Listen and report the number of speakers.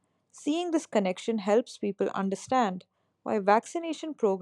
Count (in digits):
1